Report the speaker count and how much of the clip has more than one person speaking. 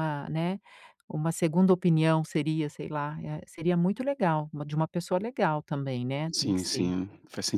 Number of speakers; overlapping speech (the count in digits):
2, about 8%